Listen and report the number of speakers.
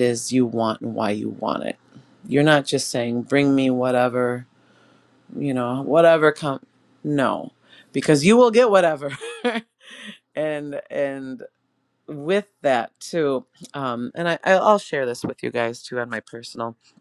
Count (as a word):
one